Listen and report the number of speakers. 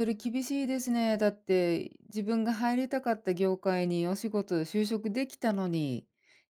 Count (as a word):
one